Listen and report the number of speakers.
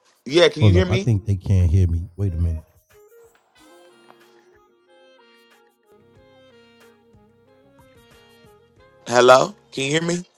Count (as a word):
two